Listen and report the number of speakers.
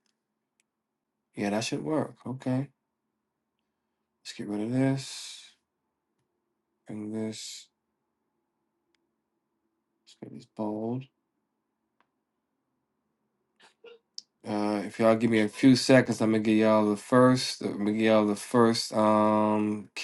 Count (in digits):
1